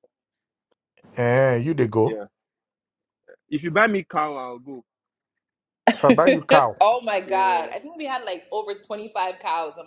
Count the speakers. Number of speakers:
three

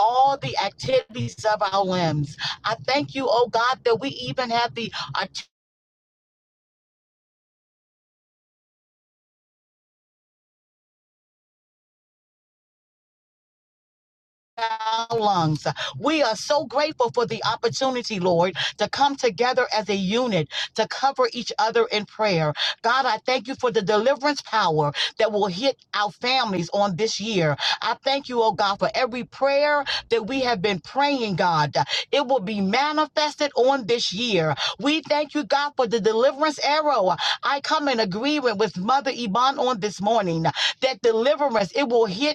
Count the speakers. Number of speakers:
one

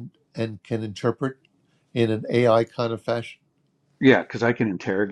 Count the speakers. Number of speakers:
two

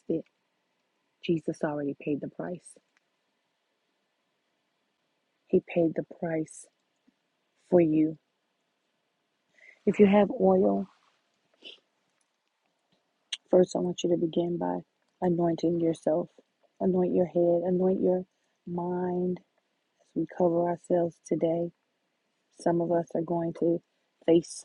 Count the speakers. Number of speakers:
one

